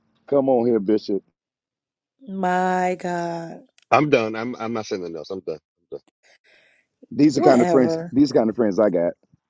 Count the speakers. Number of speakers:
3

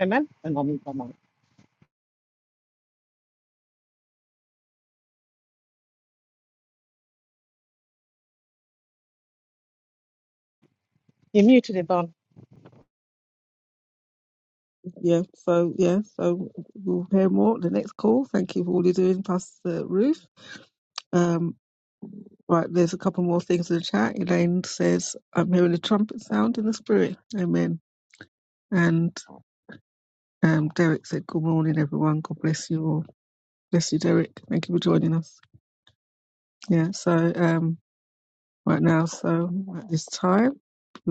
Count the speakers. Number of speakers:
2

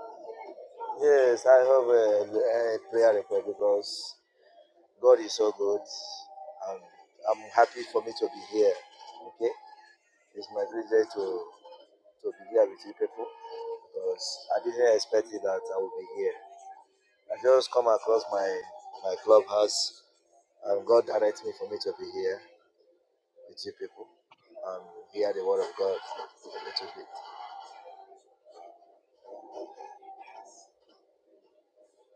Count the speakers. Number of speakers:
1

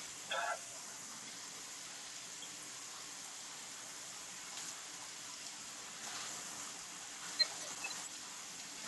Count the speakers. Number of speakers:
0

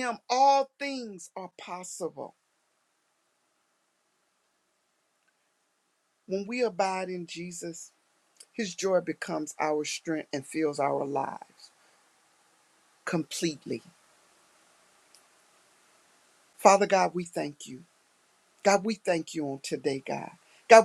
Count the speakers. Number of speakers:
1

